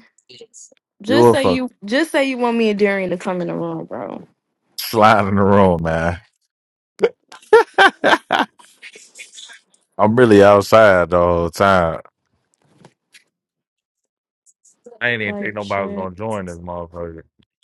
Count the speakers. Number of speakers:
two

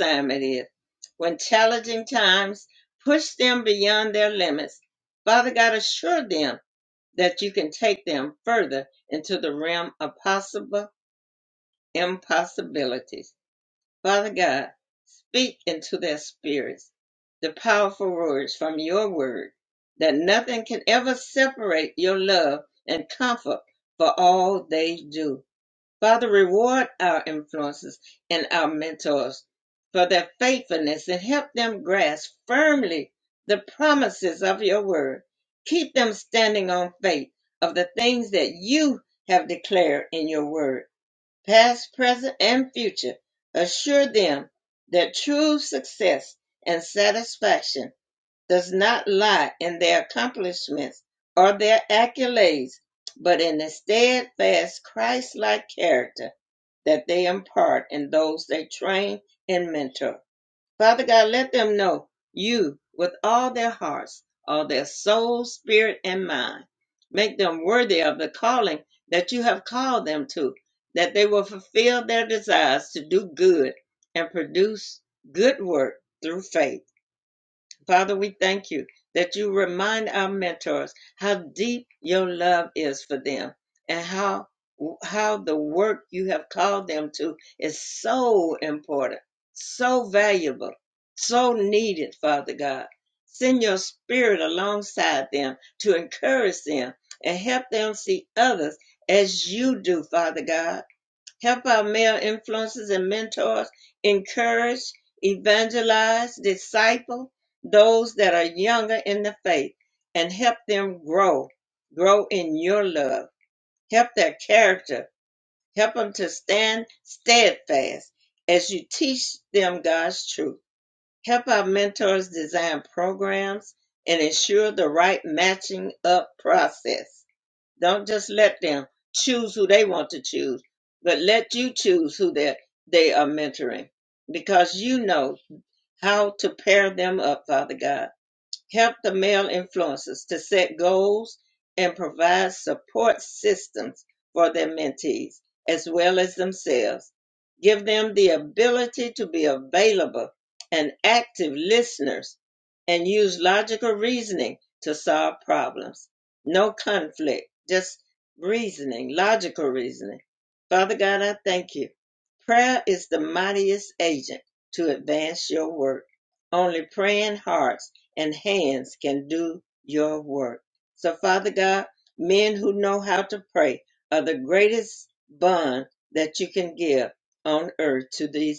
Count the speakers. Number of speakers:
one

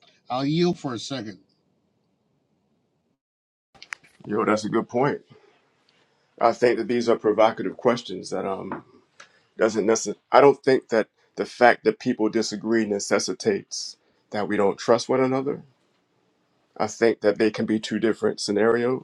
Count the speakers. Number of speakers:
two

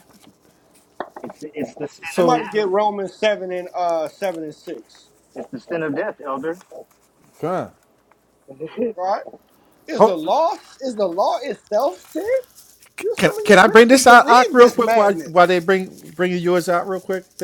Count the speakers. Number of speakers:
three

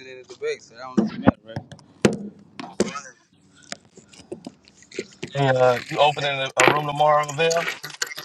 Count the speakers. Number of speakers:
two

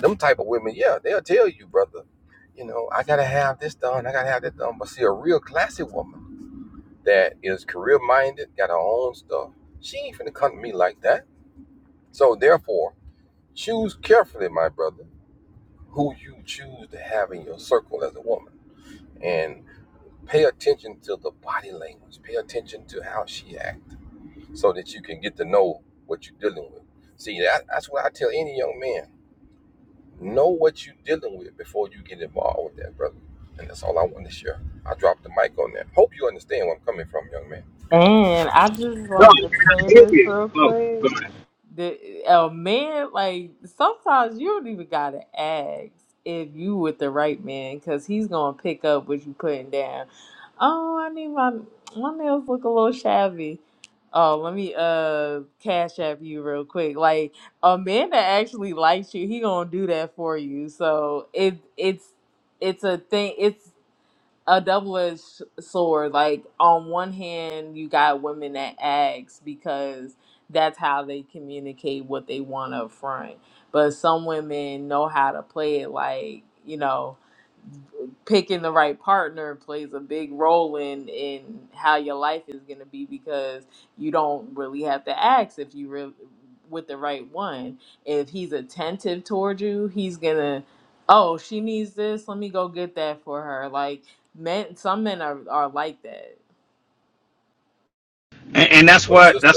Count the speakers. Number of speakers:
three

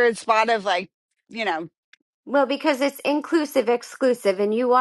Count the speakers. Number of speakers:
two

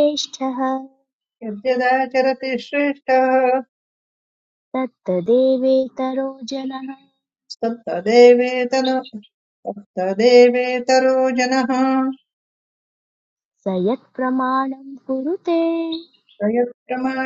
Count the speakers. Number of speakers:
two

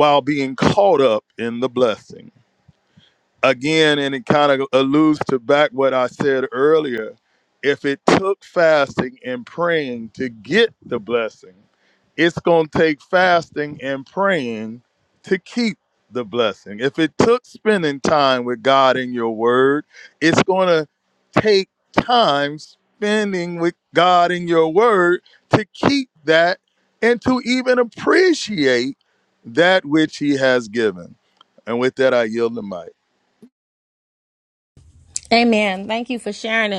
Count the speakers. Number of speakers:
two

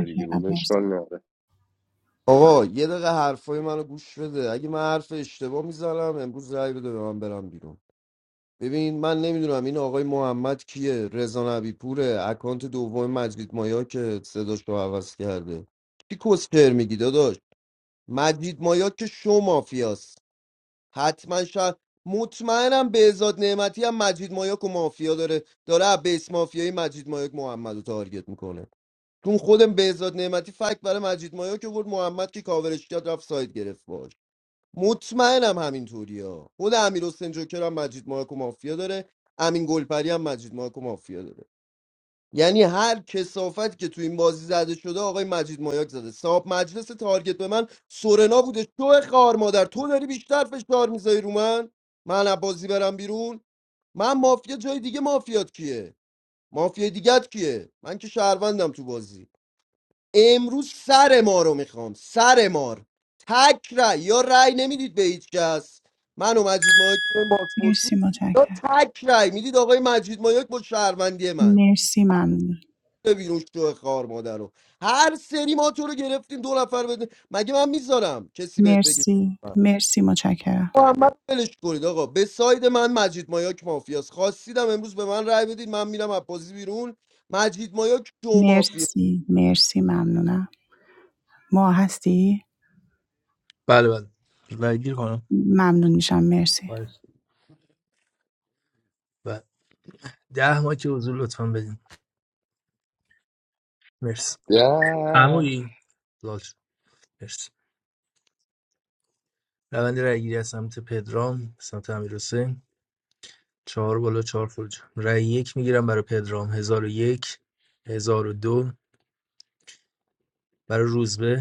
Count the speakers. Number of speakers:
four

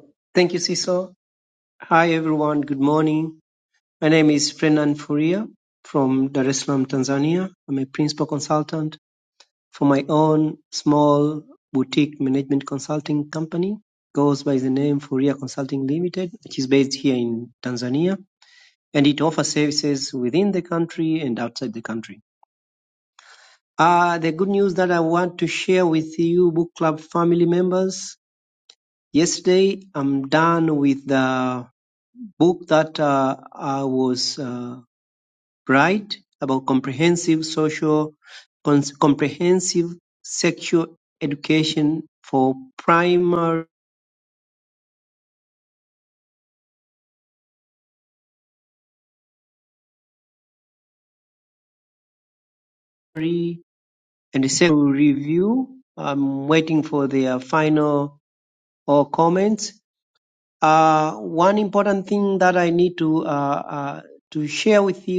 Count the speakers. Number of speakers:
one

